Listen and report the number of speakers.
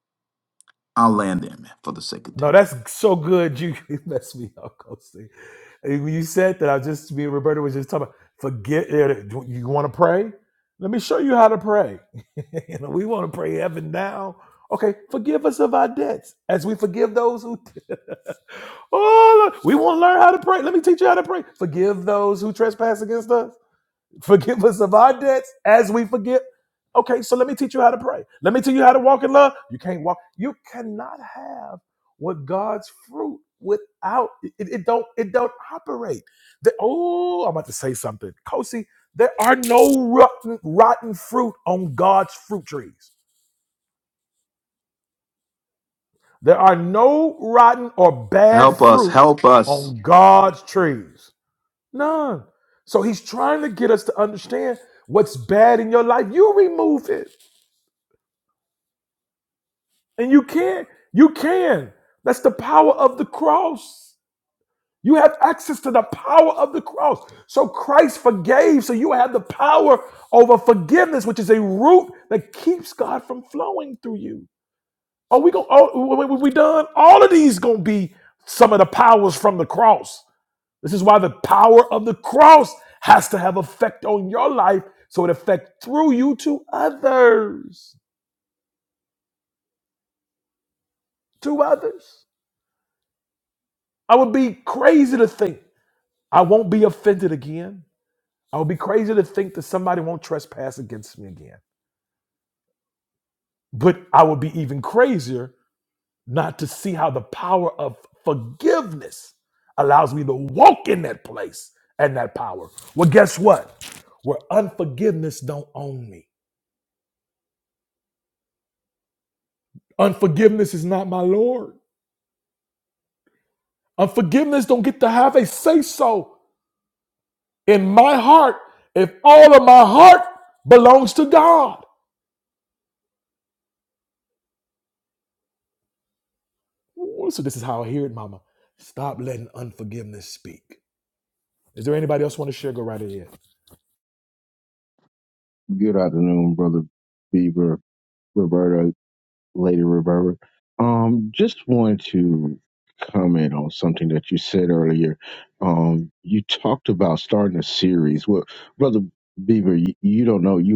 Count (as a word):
three